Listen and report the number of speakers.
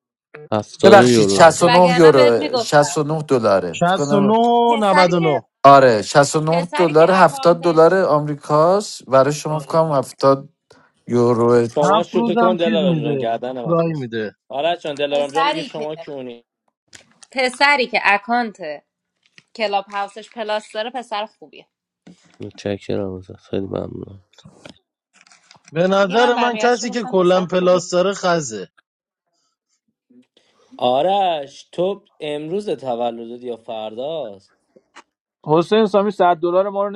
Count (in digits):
6